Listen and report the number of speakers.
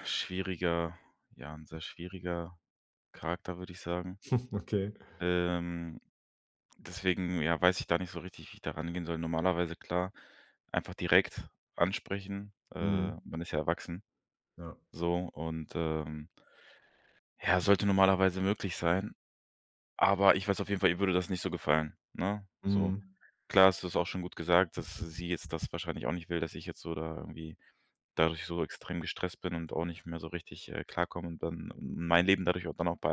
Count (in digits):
2